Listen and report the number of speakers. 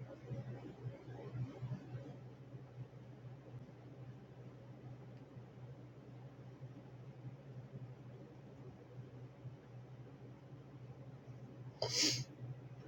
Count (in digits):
0